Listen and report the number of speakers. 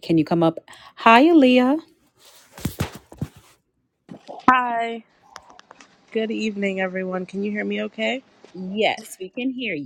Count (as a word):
two